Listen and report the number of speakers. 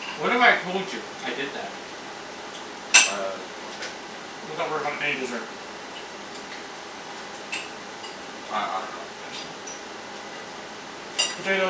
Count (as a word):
three